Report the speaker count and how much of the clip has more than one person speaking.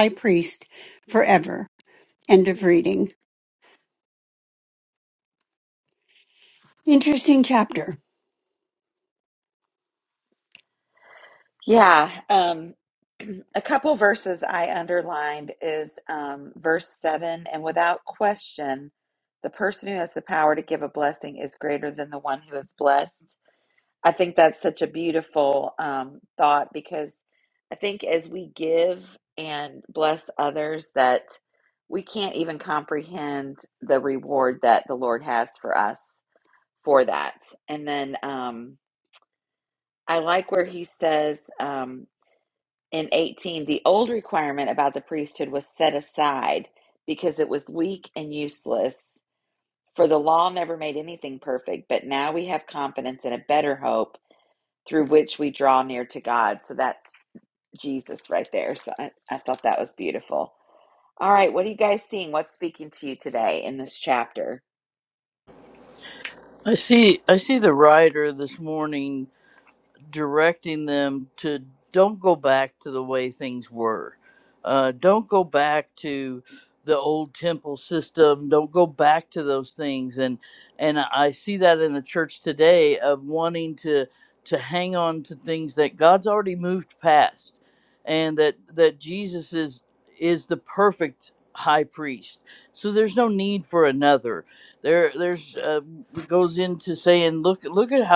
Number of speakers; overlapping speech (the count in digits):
3, no overlap